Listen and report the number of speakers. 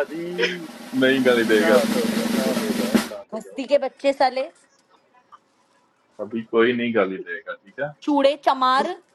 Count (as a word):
three